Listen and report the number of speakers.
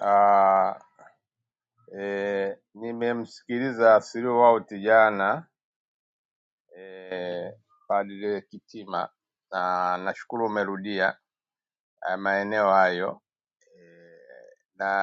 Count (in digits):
1